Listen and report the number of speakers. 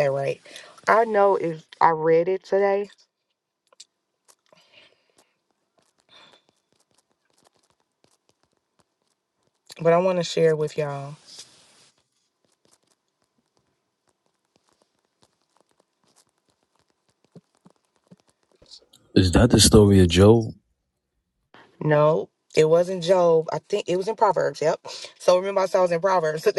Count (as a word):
two